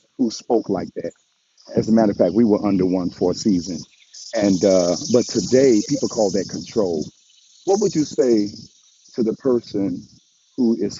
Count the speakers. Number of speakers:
1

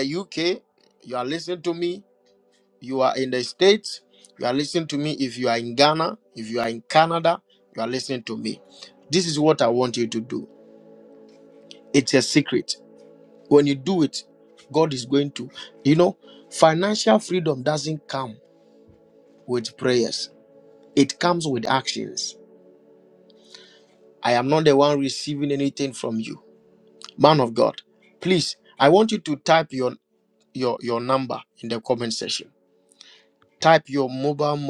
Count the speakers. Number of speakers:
1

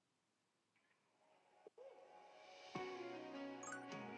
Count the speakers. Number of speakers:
0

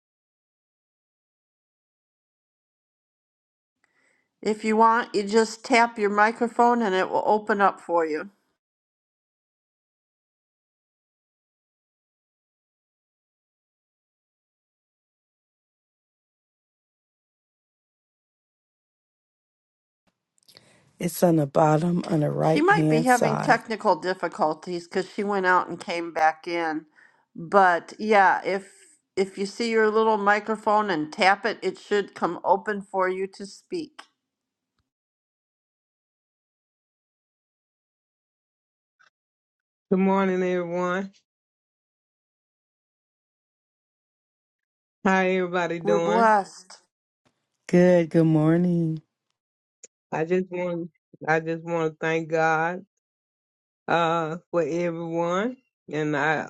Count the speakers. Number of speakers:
3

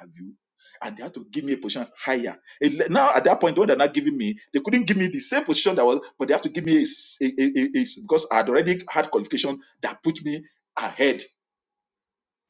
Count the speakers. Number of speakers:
1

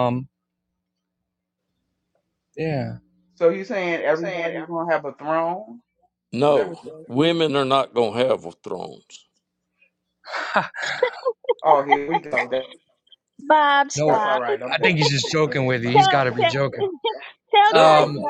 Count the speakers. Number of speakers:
4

